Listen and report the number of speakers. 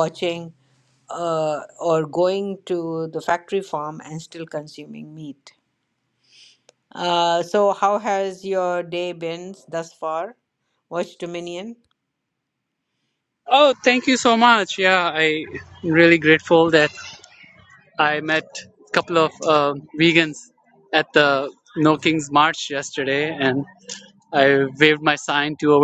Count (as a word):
two